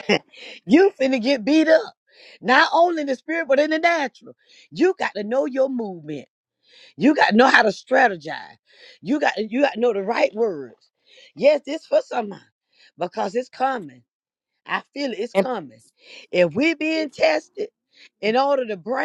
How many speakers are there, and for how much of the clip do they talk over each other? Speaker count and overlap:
1, no overlap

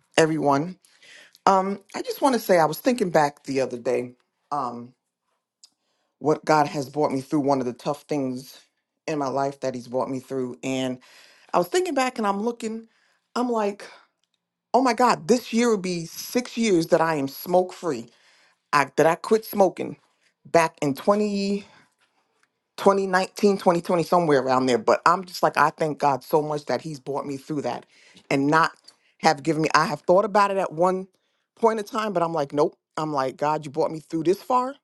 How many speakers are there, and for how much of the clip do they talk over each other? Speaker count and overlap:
1, no overlap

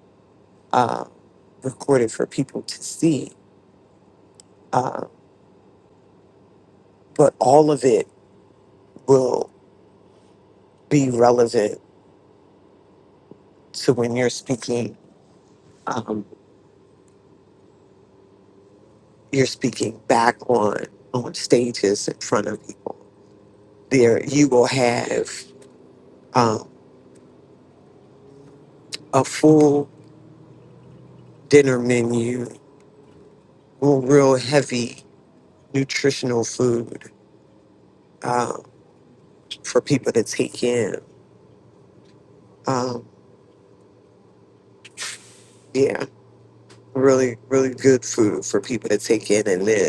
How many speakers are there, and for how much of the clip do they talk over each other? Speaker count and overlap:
1, no overlap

